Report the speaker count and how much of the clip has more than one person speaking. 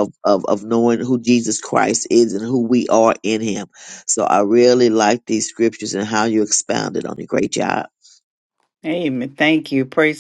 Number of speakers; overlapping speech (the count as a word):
two, no overlap